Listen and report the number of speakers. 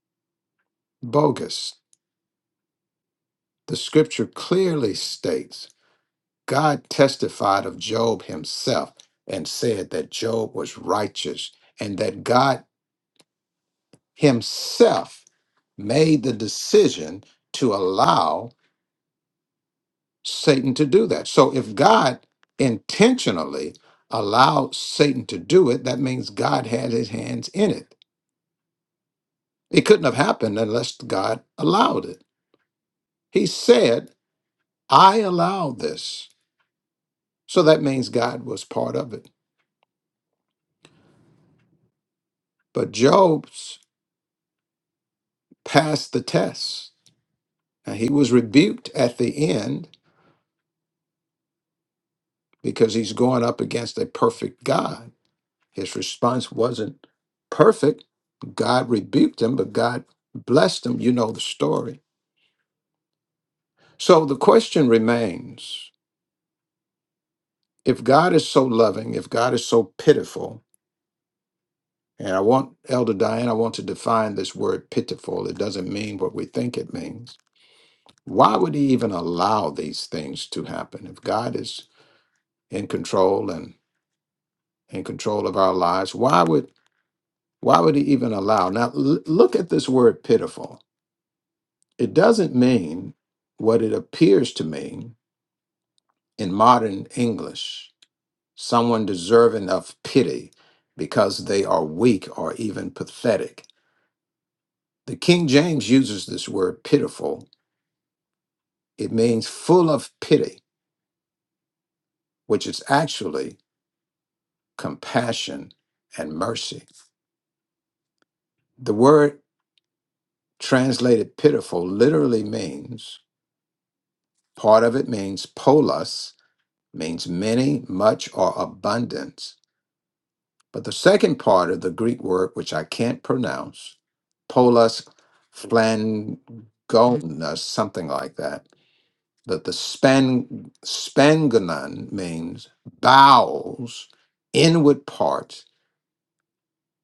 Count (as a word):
one